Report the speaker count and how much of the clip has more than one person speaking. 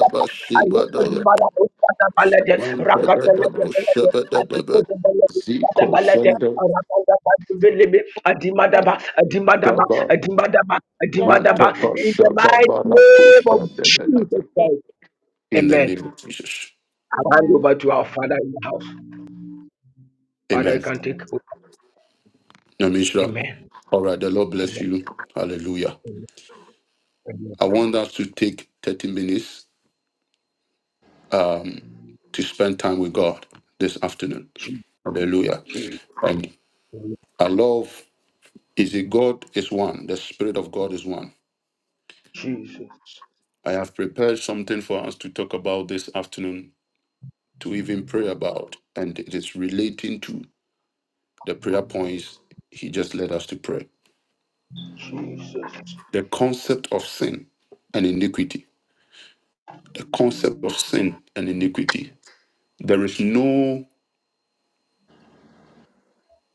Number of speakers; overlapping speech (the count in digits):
2, about 9%